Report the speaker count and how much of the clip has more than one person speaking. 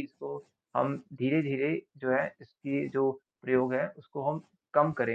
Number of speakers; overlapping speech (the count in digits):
1, no overlap